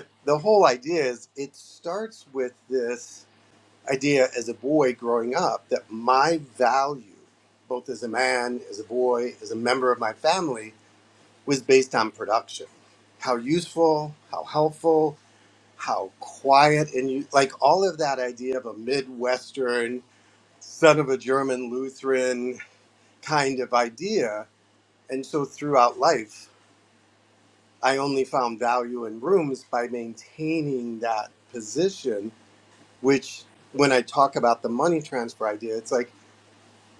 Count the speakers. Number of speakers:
one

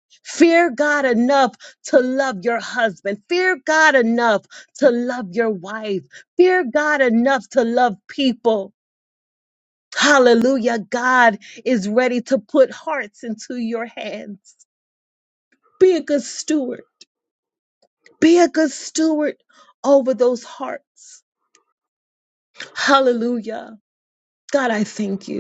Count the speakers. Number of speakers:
one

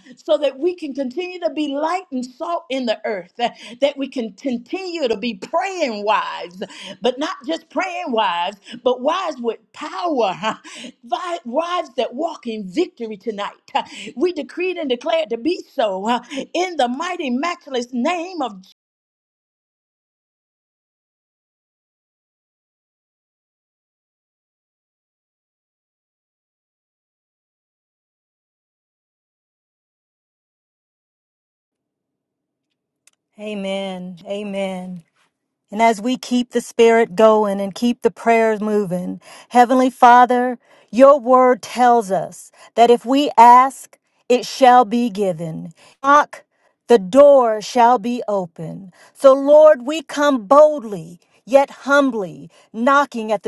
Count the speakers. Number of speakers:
two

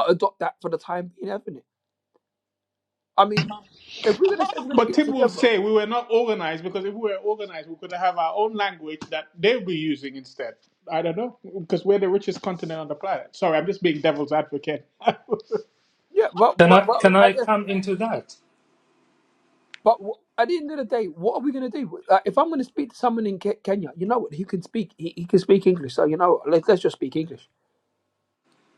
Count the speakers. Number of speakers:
three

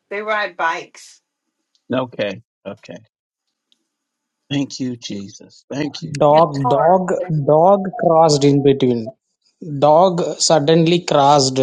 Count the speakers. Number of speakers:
three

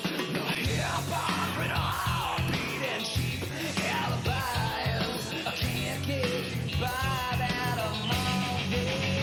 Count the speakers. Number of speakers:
zero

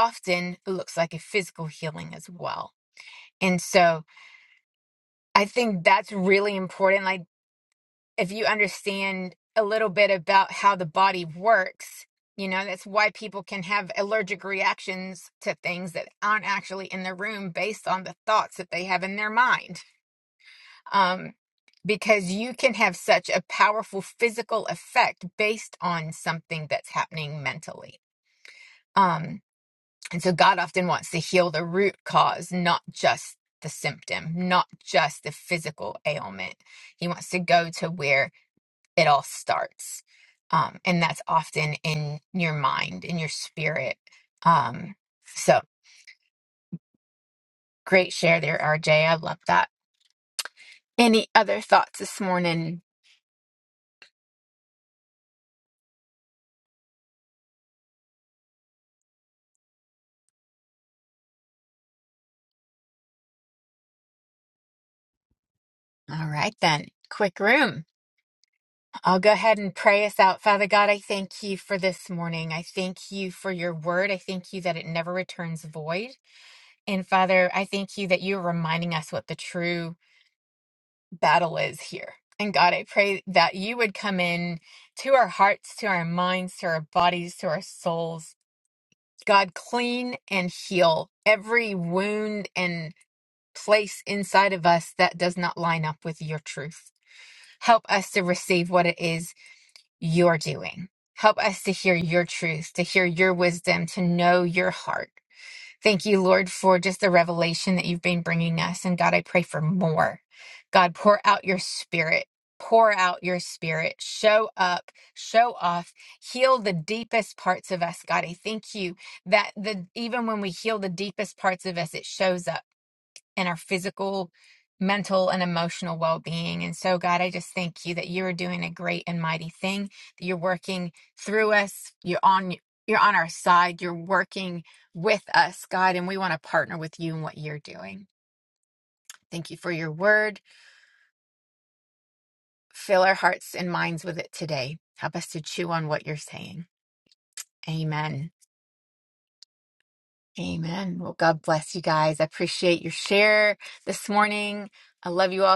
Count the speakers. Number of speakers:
one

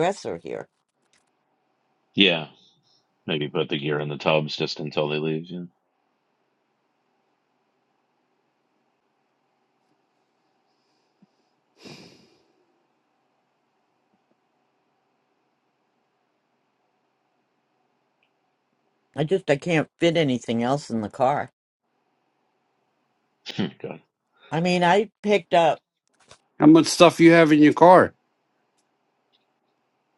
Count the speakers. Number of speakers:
three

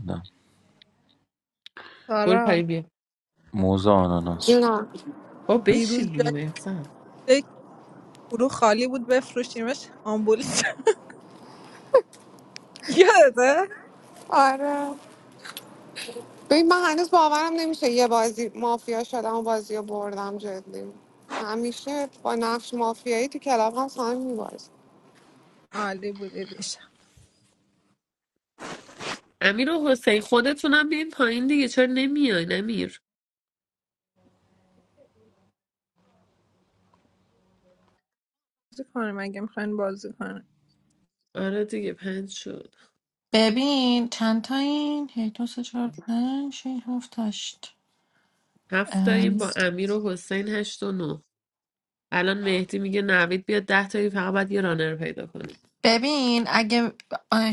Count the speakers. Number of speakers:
five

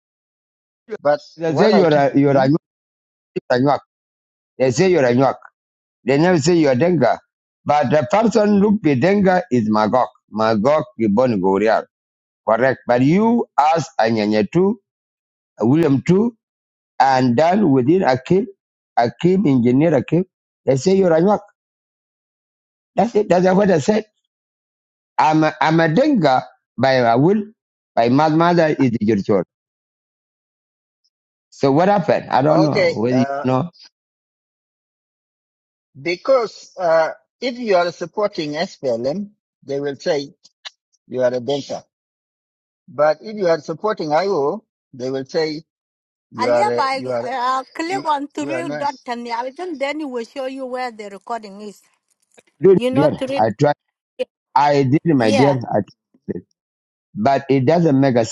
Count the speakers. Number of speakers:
three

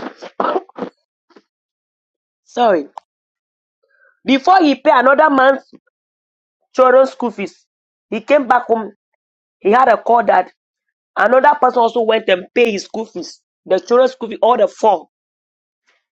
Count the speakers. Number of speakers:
one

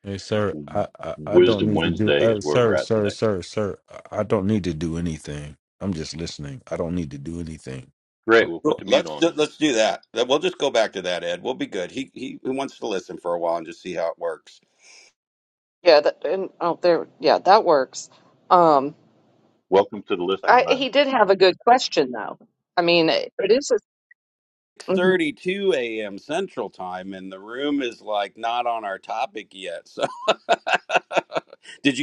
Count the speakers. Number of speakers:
four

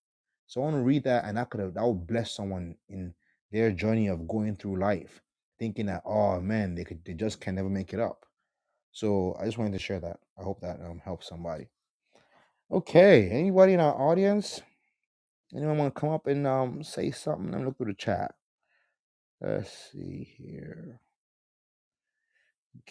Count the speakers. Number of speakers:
one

